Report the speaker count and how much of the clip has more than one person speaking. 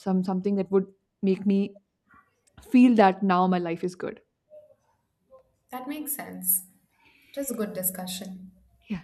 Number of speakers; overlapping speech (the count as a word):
two, no overlap